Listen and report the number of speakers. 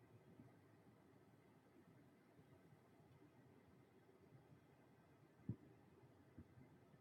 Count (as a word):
zero